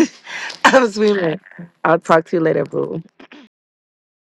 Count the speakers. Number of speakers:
1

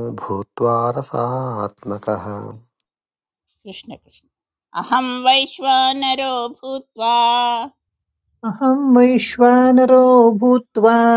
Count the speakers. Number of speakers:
3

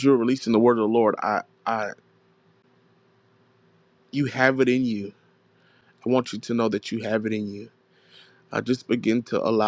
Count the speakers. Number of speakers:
1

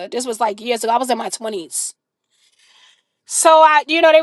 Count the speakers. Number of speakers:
1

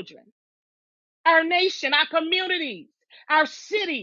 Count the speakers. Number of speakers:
1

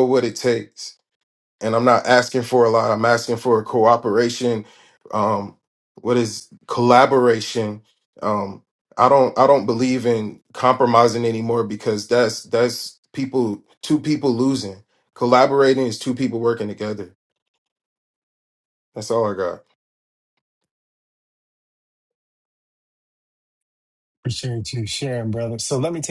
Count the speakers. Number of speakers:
2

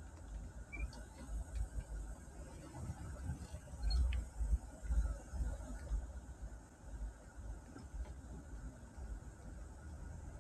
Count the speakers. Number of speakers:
0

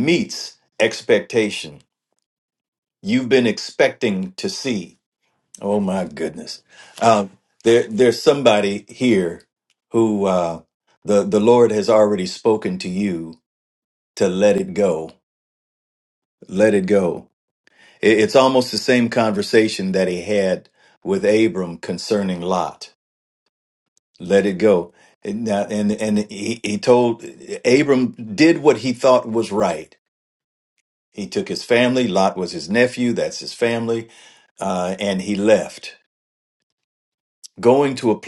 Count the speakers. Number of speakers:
1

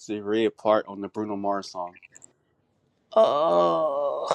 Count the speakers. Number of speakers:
2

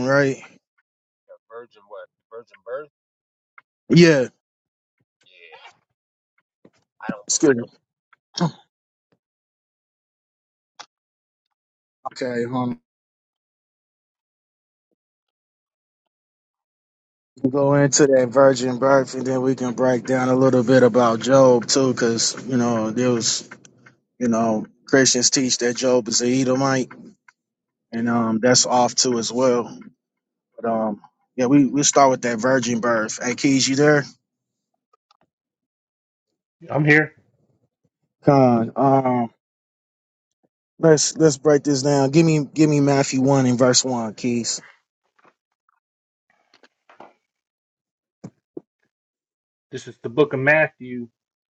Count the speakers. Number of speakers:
3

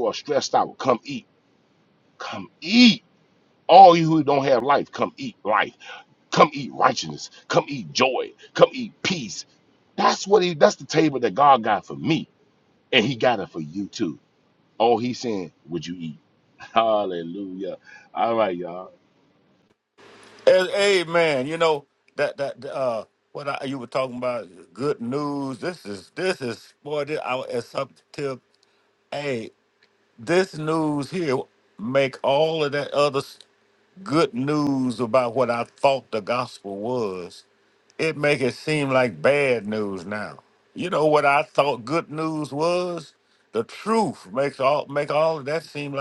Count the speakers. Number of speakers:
2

